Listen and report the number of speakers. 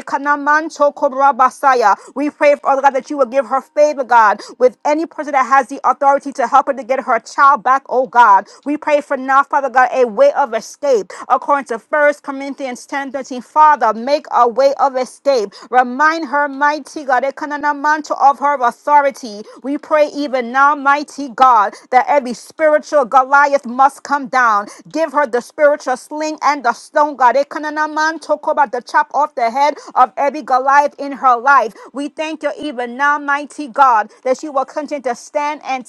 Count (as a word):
one